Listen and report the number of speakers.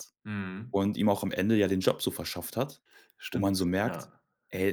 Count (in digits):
2